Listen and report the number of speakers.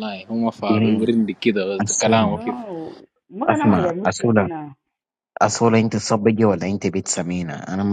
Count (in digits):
3